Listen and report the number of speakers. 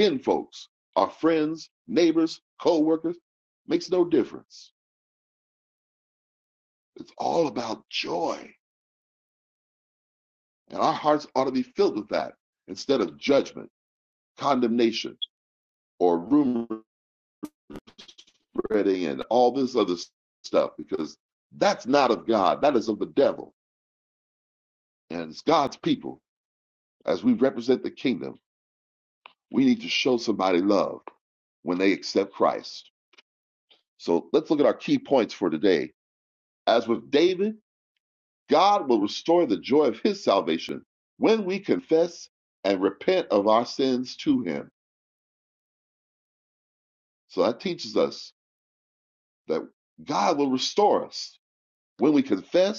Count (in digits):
1